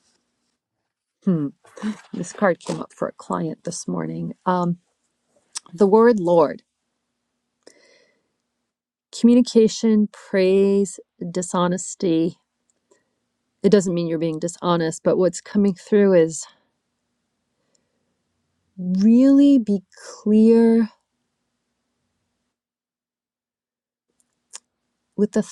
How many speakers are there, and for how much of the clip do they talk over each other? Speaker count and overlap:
1, no overlap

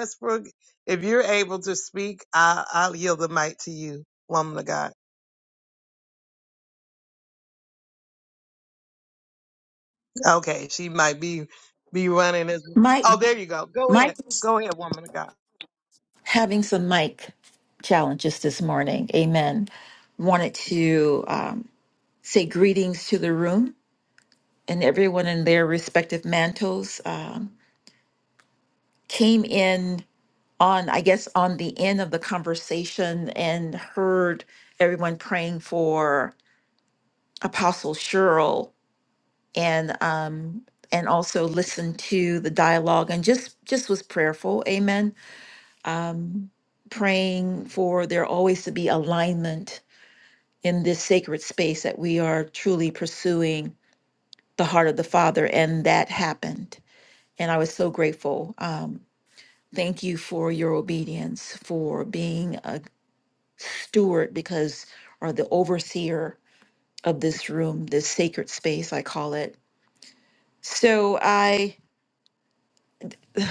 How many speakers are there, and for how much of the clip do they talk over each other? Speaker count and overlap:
2, about 1%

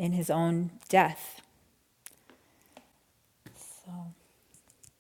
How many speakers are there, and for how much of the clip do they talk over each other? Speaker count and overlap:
1, no overlap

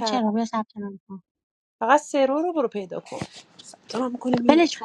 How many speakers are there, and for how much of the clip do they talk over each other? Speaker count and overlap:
2, about 8%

